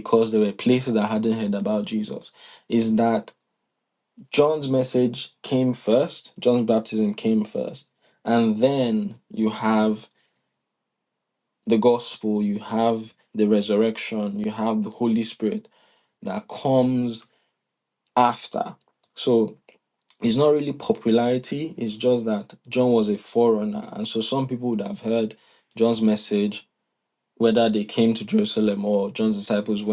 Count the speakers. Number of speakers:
1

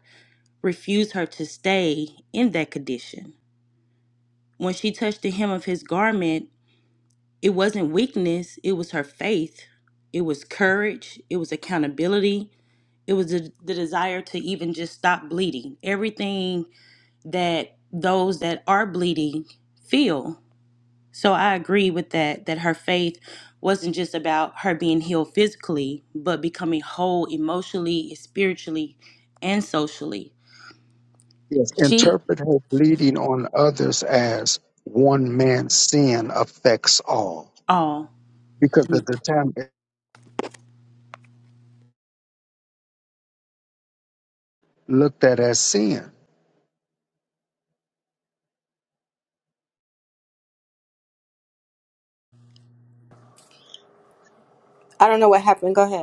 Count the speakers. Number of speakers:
3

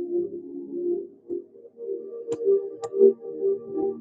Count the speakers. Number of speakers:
0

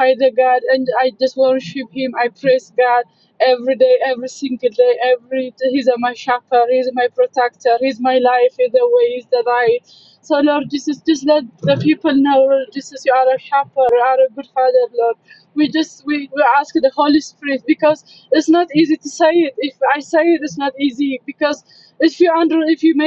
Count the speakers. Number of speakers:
1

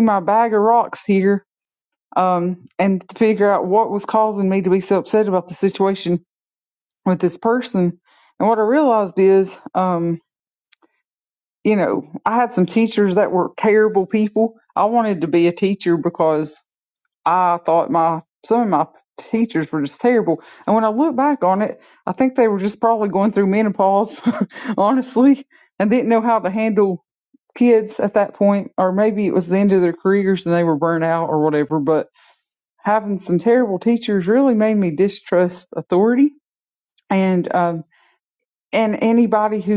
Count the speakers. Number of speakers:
1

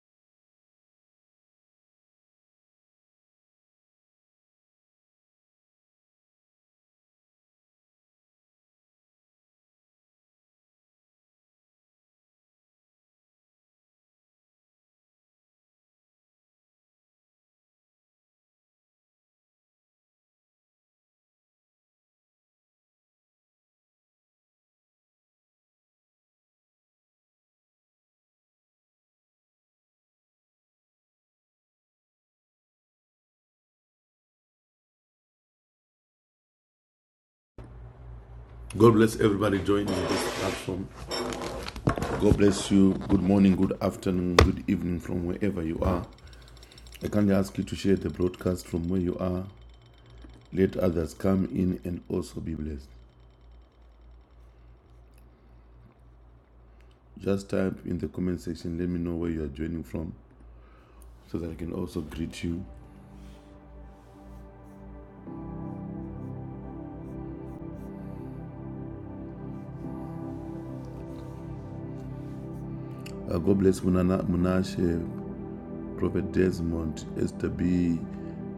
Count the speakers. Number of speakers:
1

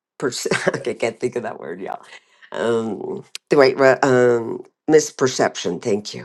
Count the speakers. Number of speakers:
1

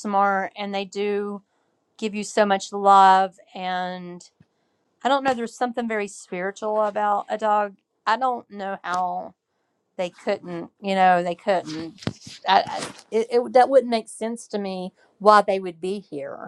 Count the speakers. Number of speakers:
1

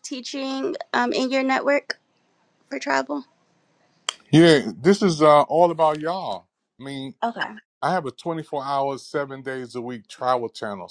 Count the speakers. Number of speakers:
2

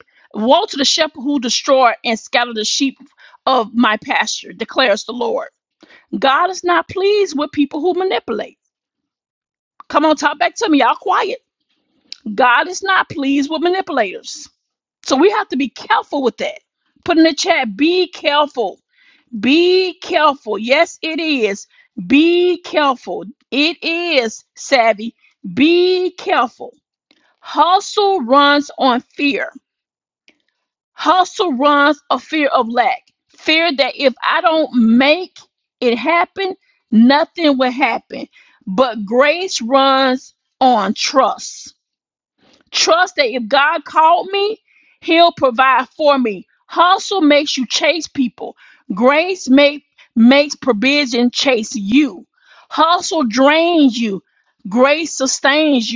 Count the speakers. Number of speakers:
1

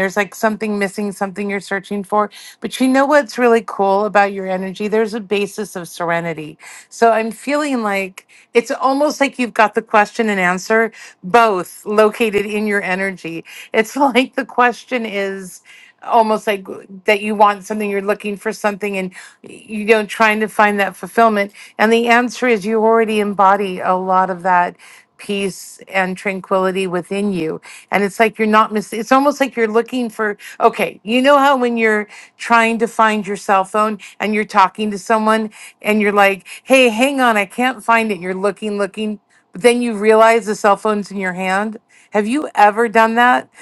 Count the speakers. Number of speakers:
1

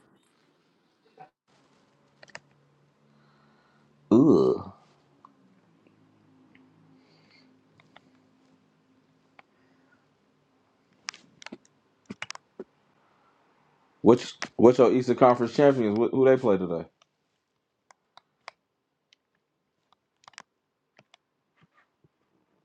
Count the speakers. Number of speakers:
1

